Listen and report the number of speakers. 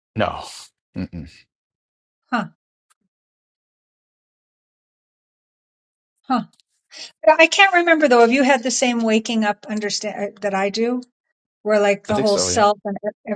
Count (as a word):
two